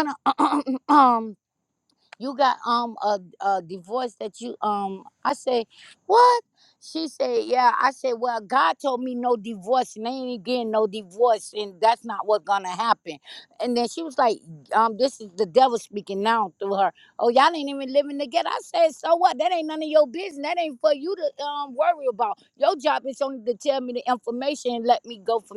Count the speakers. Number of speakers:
1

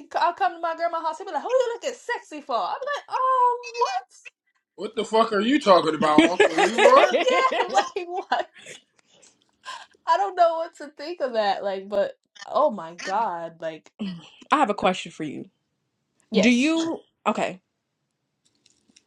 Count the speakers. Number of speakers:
3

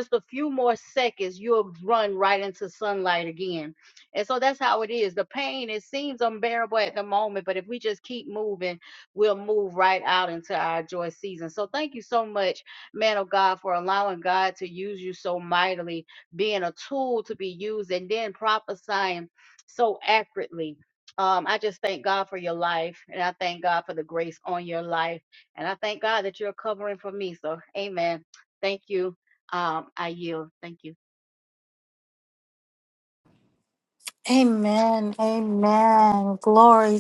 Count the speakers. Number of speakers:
2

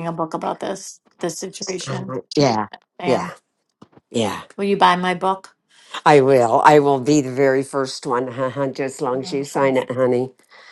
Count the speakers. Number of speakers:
2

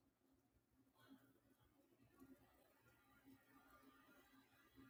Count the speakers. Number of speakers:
0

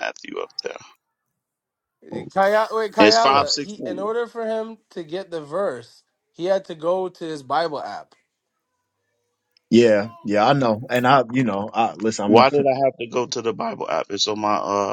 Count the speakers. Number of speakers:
3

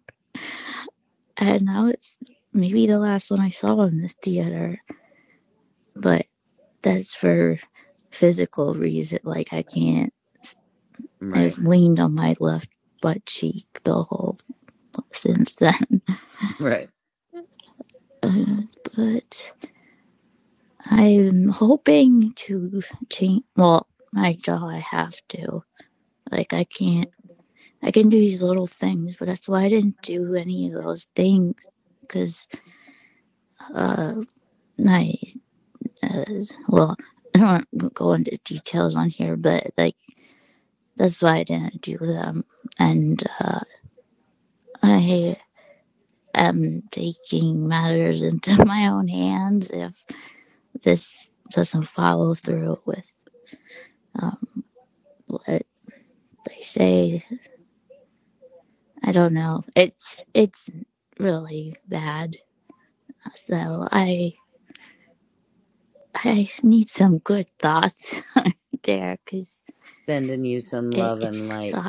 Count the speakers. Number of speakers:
2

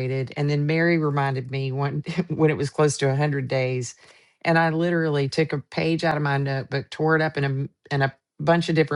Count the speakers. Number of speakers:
1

